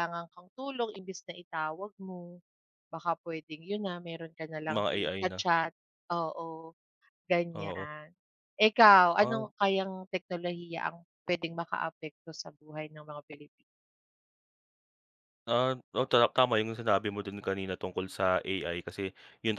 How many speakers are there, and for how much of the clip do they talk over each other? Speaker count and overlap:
two, about 7%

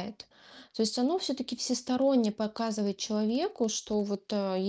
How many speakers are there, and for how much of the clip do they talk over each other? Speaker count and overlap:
one, no overlap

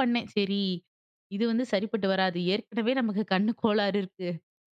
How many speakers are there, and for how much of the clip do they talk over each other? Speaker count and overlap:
one, no overlap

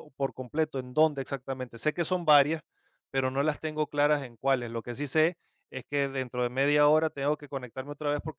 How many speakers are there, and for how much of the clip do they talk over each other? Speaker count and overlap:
one, no overlap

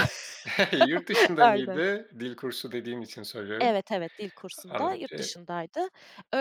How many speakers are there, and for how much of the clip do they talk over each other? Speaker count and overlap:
two, about 19%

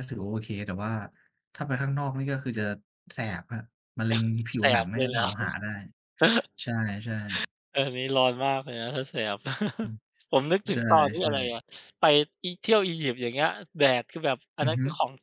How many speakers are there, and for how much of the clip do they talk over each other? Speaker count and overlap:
two, about 9%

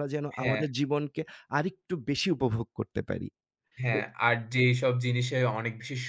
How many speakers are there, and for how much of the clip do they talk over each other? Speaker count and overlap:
two, about 6%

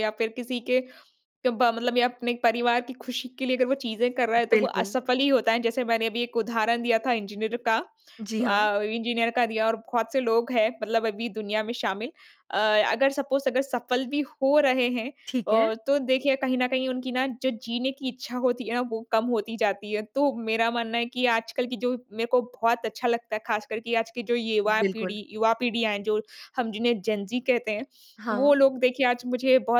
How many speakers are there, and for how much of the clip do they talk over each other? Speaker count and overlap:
two, about 5%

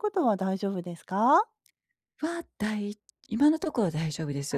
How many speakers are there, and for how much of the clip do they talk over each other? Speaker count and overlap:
two, about 2%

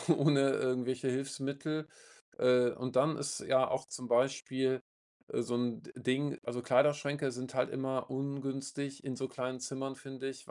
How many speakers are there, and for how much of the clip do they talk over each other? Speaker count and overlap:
one, no overlap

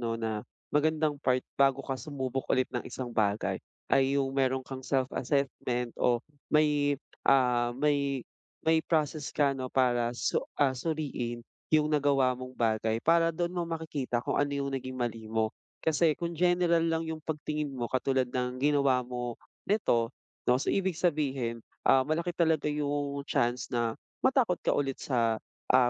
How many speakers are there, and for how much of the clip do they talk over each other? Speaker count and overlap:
one, no overlap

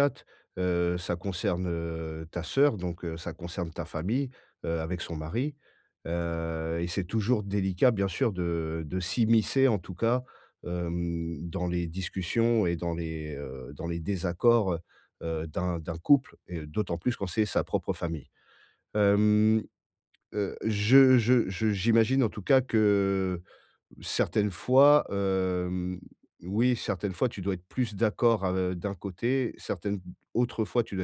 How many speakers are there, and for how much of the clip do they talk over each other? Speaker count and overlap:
one, no overlap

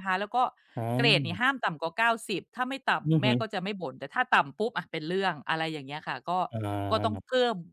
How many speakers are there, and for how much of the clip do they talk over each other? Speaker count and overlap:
two, about 12%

